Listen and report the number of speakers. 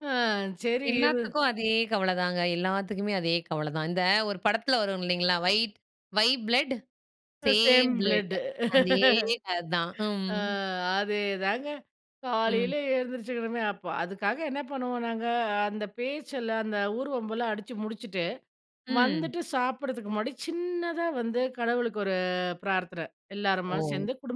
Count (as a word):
two